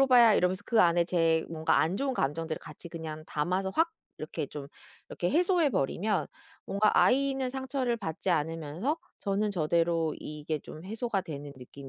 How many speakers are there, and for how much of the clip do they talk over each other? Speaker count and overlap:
1, no overlap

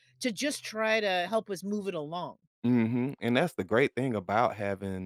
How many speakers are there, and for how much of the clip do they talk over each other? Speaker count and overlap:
2, no overlap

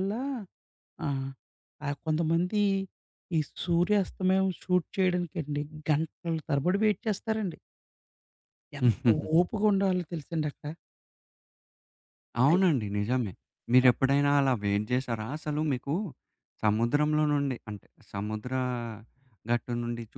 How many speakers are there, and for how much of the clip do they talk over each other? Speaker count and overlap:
2, about 1%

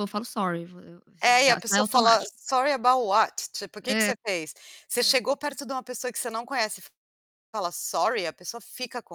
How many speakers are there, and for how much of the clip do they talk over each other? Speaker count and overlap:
2, about 12%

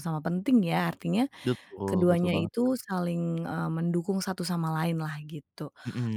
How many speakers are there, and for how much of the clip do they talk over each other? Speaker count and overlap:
2, about 10%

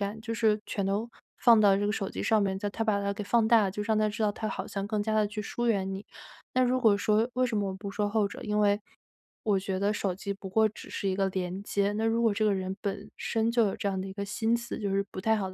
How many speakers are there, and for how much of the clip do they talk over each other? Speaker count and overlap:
1, no overlap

